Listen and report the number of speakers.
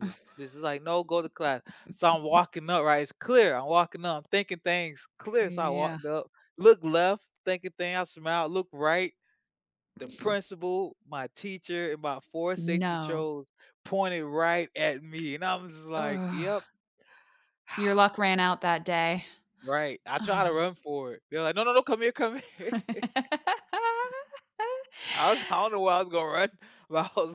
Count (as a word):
two